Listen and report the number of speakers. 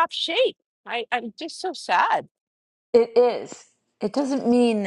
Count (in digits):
2